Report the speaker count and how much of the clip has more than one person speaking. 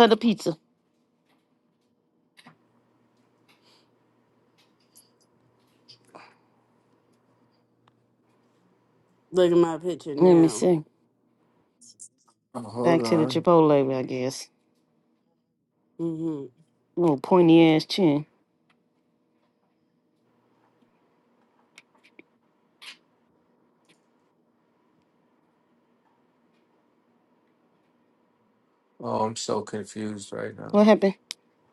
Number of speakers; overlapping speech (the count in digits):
3, about 3%